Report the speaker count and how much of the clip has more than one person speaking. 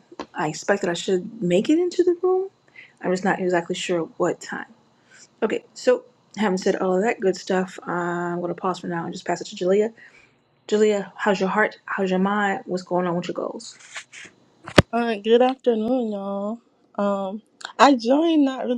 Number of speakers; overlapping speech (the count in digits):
2, no overlap